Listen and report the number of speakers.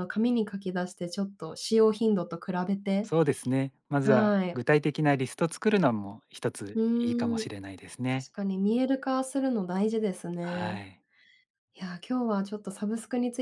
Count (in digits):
2